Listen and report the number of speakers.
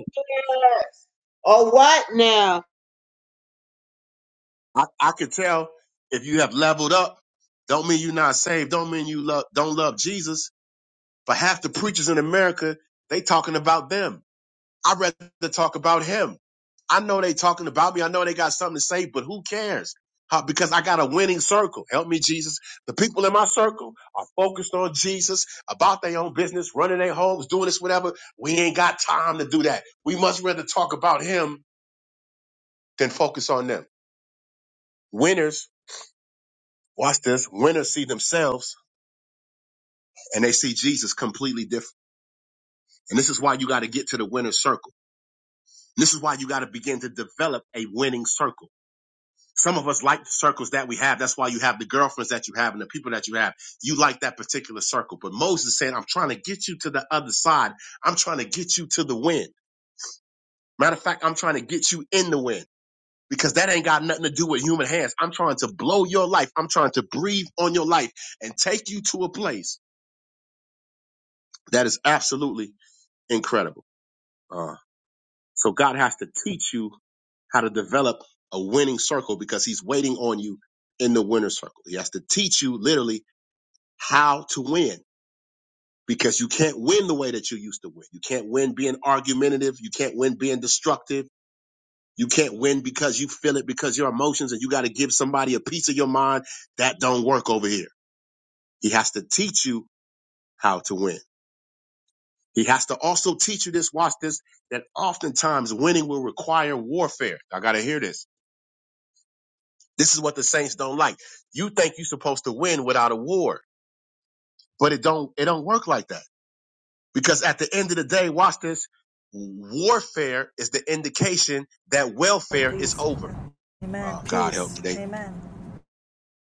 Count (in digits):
3